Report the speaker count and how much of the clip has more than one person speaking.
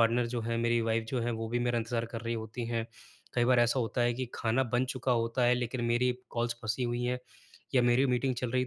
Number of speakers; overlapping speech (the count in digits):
1, no overlap